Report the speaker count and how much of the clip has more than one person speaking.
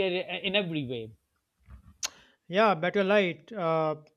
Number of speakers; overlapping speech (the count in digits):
2, no overlap